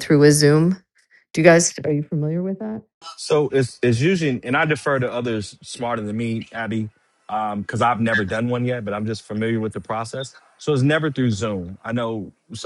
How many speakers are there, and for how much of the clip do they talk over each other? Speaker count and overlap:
2, no overlap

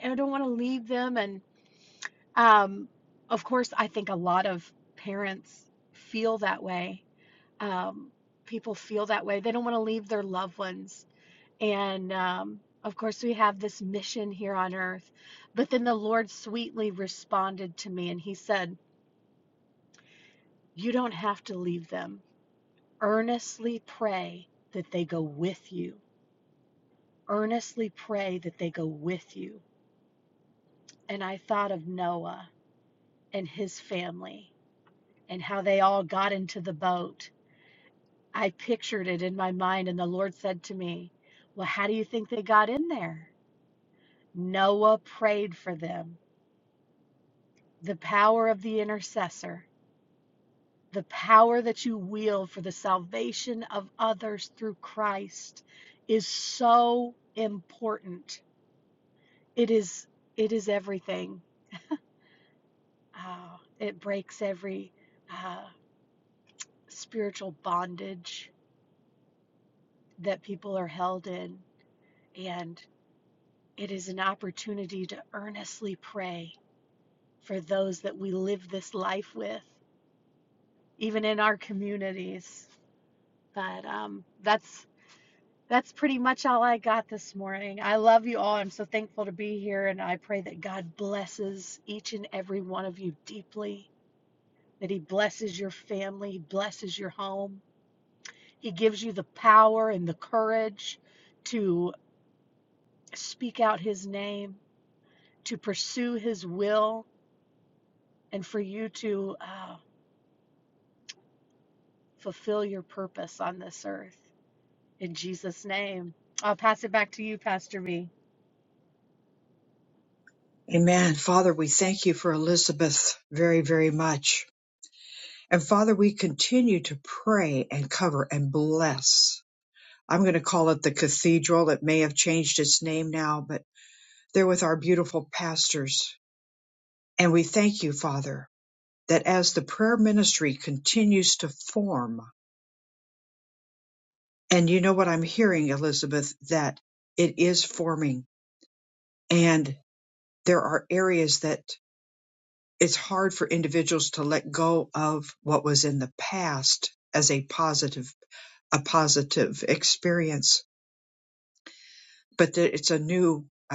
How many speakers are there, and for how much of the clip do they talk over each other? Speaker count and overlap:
2, no overlap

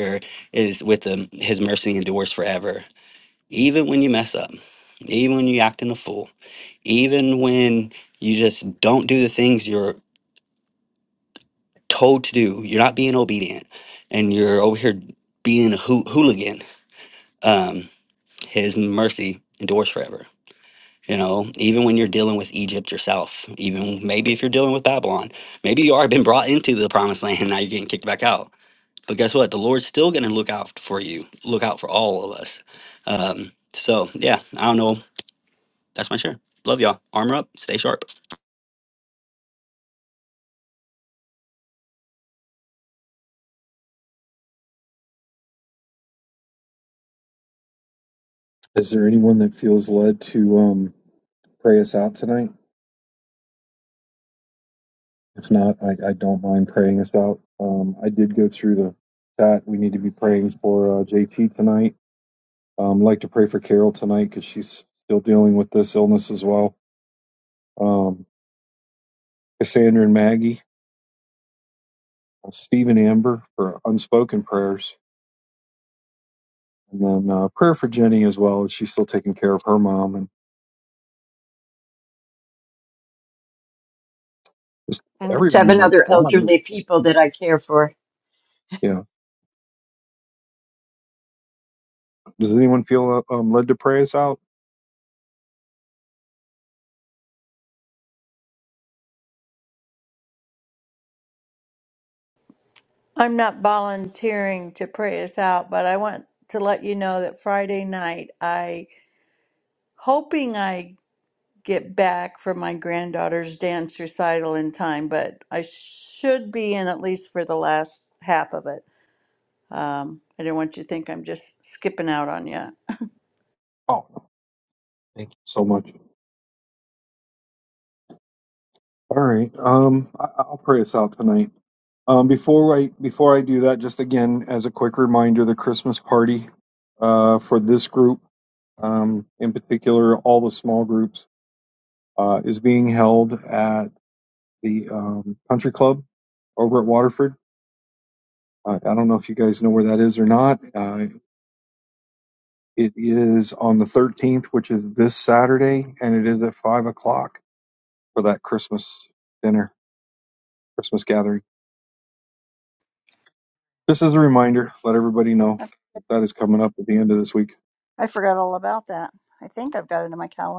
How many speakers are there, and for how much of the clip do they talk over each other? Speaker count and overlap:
5, under 1%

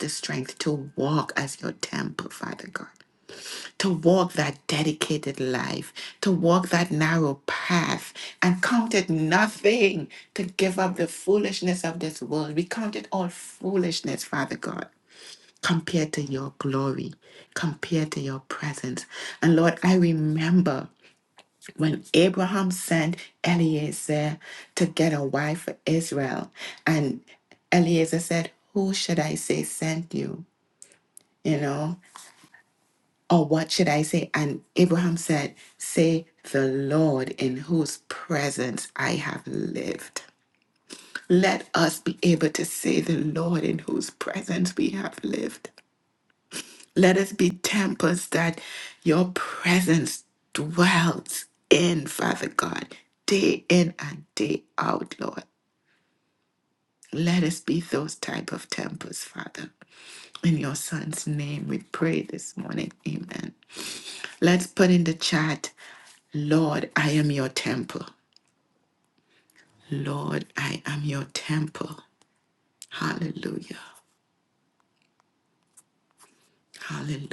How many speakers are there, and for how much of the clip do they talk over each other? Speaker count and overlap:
1, no overlap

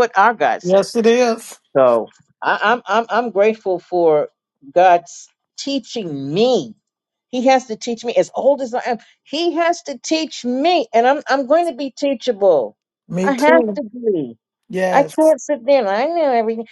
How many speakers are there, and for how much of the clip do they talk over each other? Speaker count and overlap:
2, about 6%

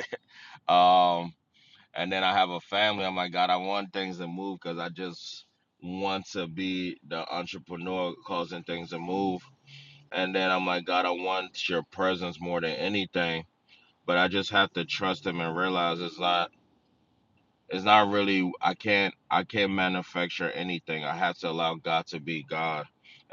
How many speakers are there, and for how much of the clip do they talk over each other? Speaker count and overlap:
1, no overlap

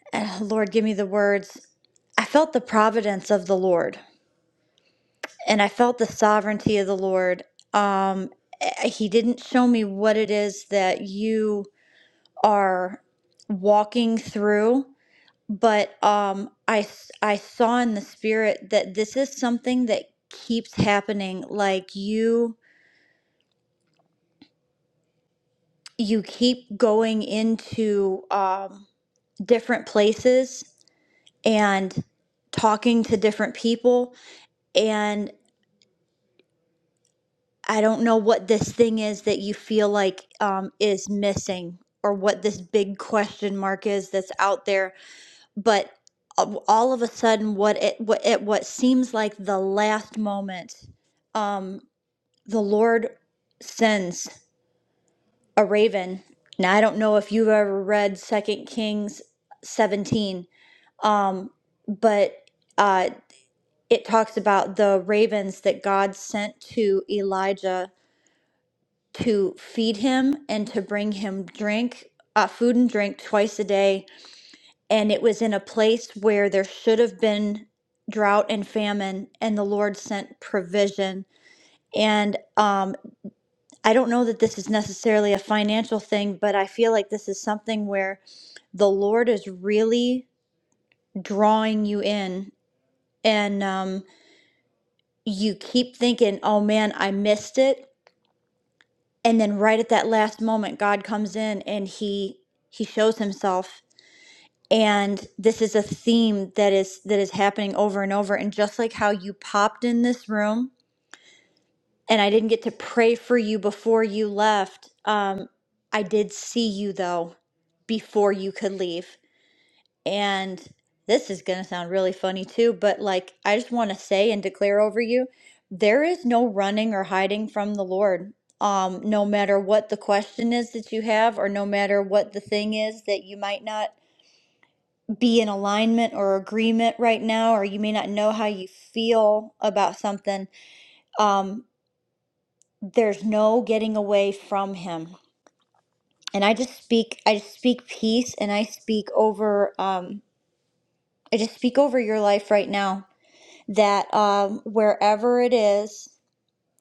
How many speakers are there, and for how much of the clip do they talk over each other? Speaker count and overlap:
1, no overlap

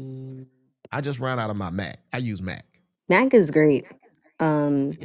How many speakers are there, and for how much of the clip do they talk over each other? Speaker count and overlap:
2, no overlap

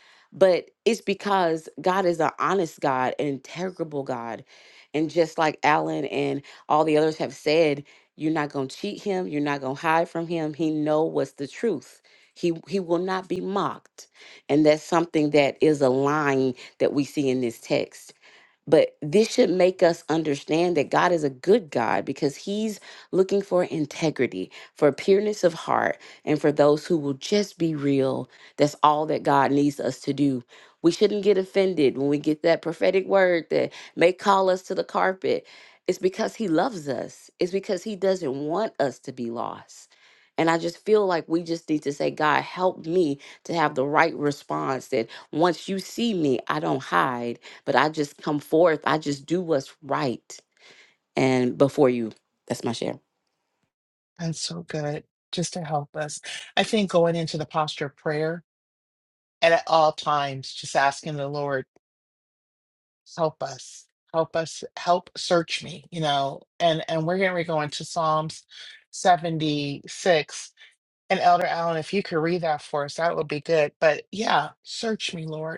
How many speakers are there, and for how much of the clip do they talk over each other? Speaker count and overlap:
2, no overlap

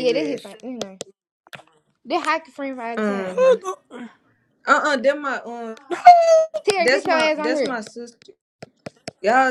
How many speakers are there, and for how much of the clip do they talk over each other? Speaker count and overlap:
3, about 20%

